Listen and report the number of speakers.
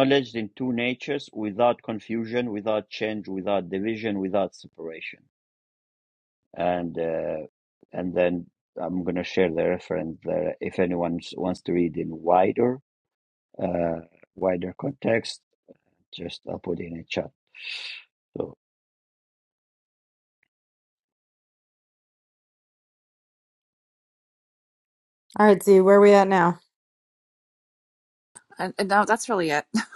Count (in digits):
3